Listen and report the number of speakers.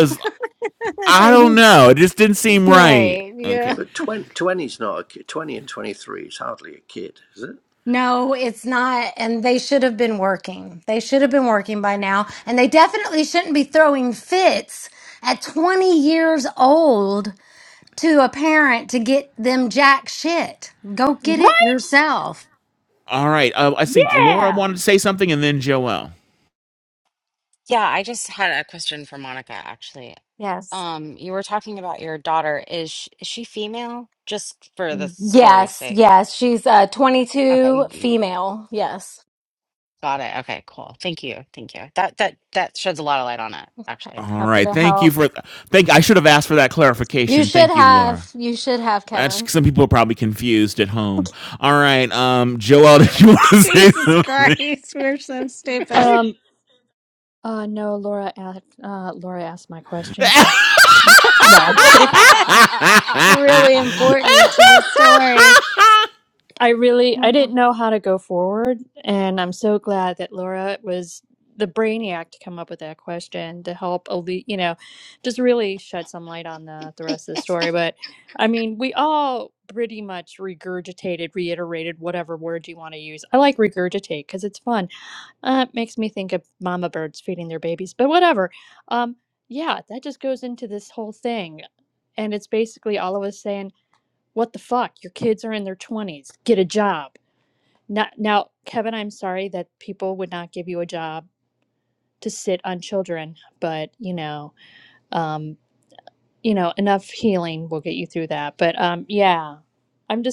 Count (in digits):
5